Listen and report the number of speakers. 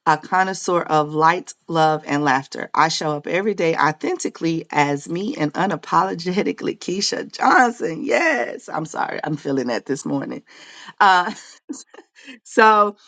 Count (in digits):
1